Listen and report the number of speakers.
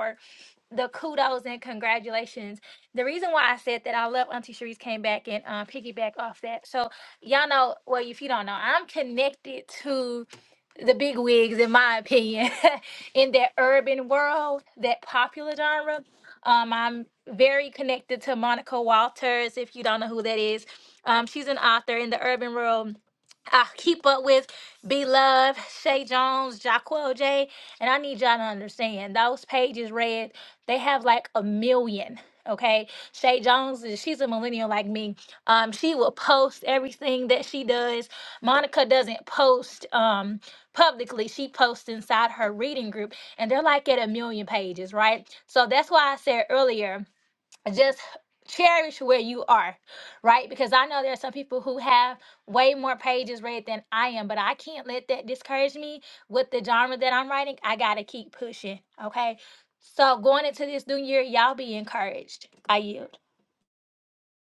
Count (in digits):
1